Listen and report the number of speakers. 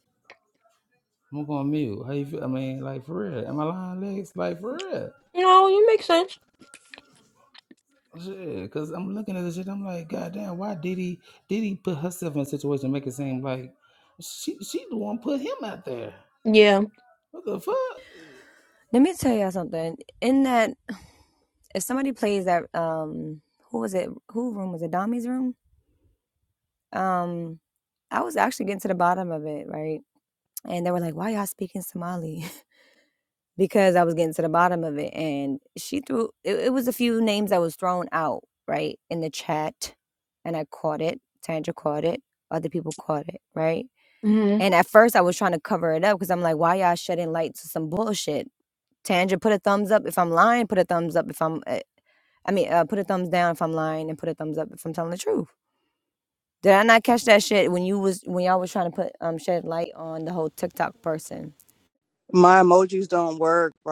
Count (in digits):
4